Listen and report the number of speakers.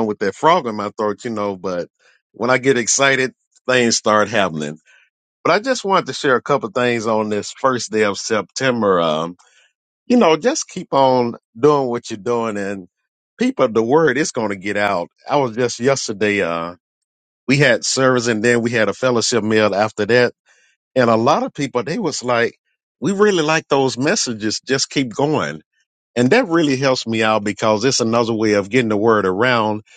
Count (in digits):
1